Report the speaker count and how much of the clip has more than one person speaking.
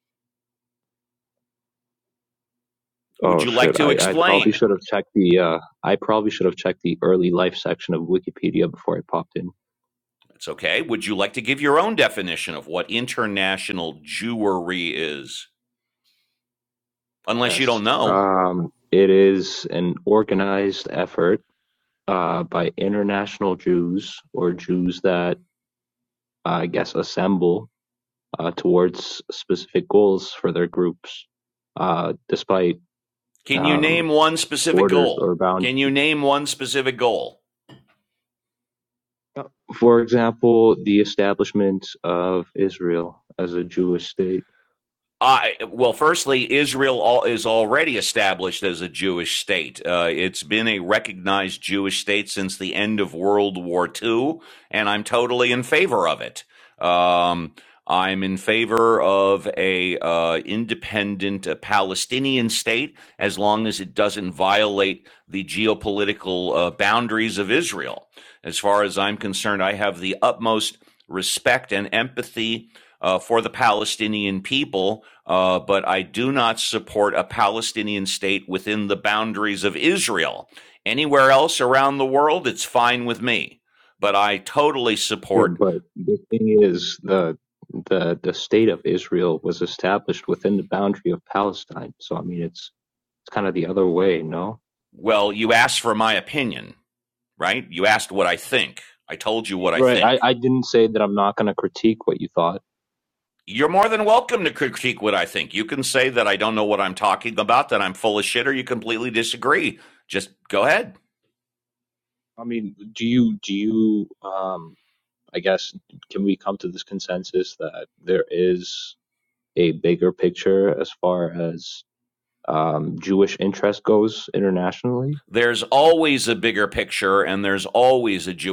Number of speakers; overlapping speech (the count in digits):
2, about 3%